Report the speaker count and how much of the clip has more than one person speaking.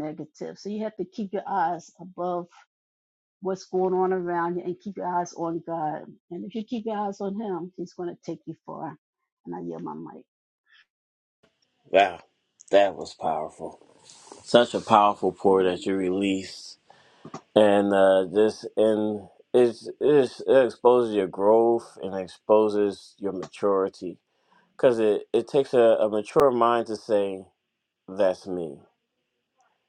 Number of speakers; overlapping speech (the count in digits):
2, no overlap